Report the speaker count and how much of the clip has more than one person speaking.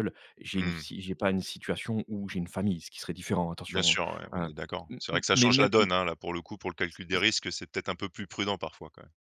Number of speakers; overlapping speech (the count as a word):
two, about 18%